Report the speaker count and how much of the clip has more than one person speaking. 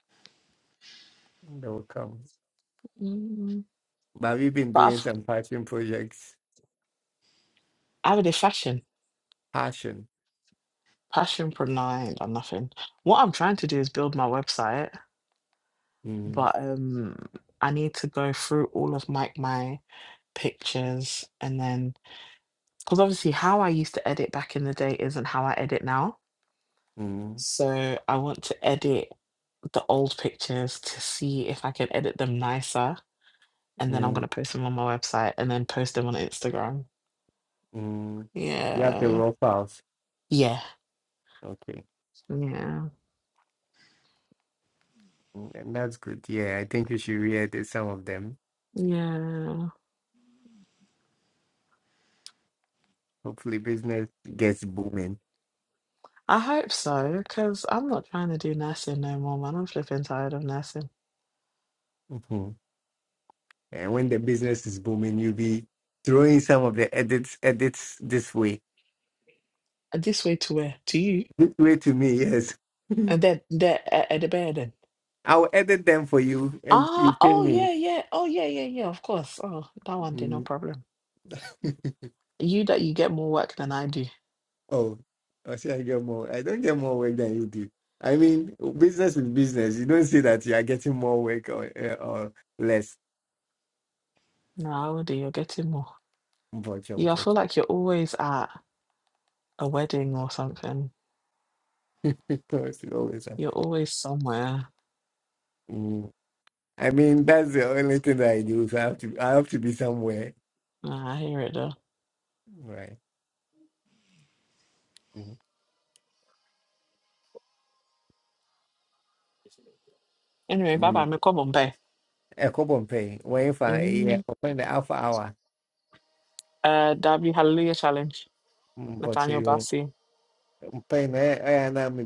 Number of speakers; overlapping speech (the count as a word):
two, about 3%